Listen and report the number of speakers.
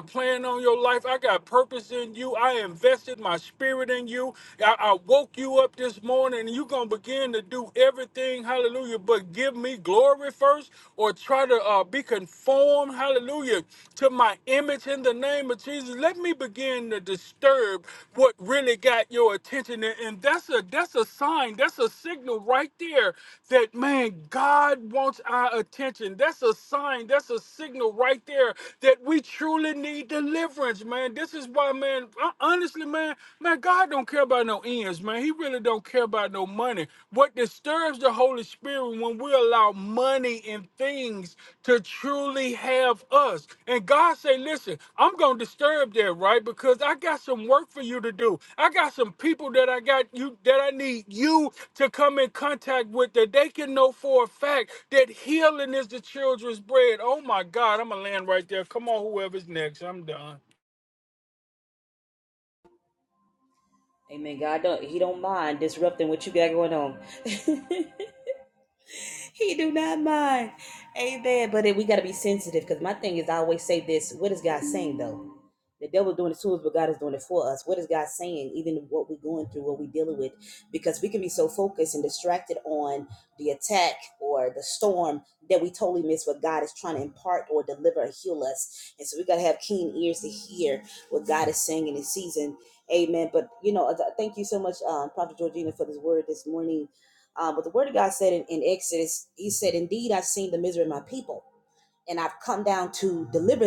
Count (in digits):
2